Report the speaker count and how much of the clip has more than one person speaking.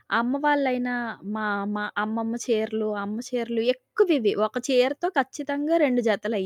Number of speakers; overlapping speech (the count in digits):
1, no overlap